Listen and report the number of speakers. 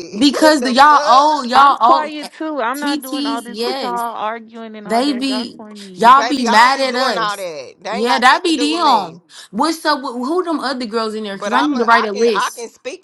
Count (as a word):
three